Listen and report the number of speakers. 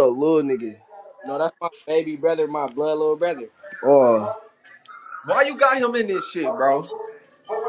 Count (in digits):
3